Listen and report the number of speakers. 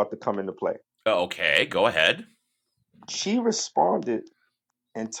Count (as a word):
two